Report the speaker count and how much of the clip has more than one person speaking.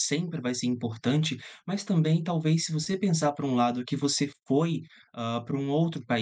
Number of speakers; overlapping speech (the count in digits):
1, no overlap